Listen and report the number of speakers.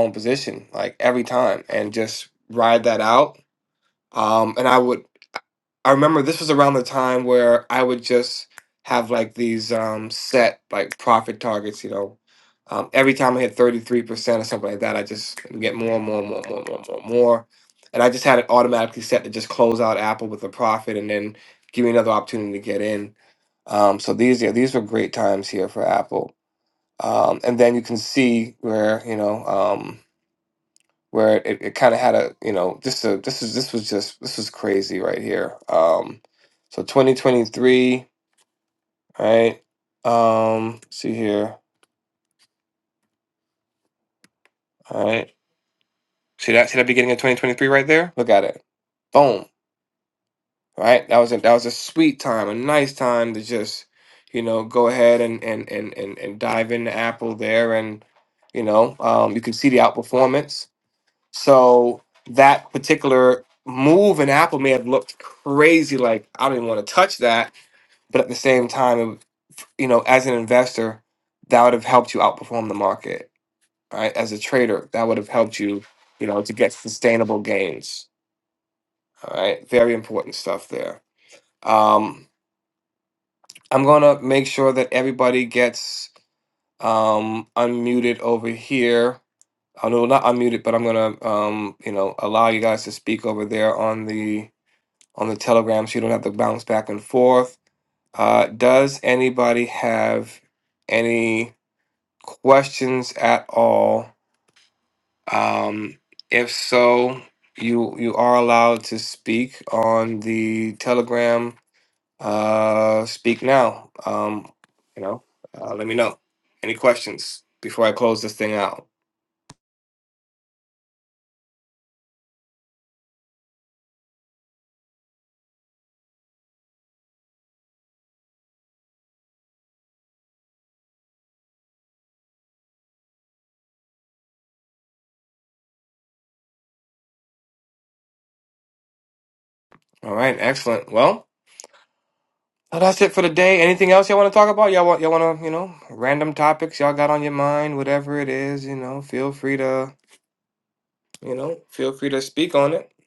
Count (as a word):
one